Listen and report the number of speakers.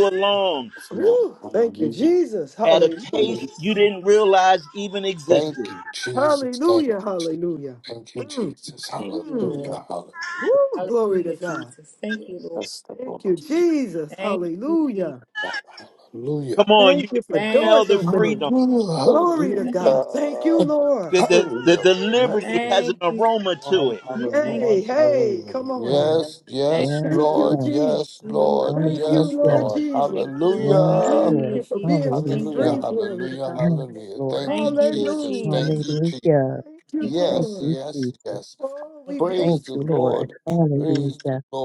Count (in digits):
5